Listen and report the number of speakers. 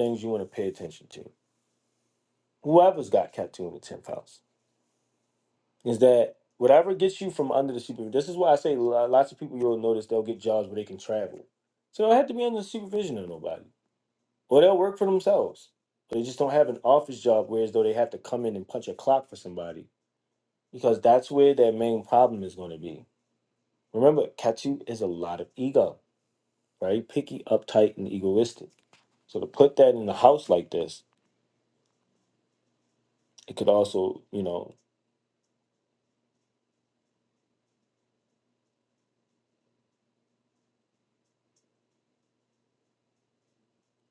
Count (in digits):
1